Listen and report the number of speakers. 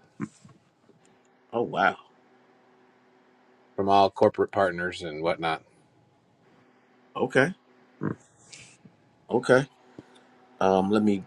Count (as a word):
two